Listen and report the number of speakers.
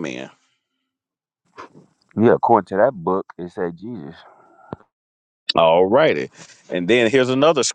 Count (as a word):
two